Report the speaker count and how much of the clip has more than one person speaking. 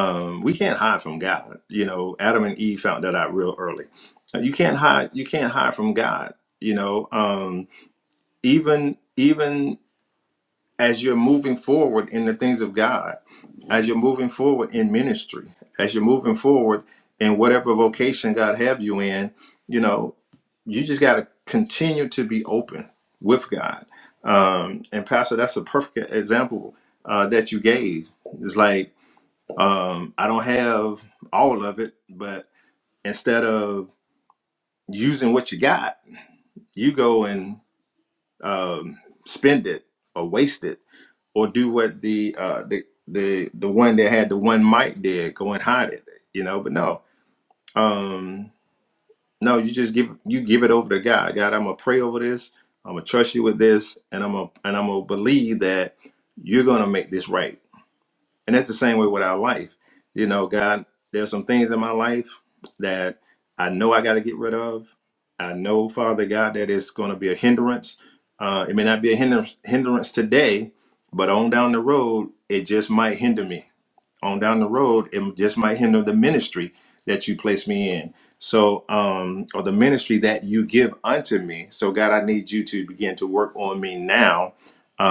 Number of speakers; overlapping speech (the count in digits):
1, no overlap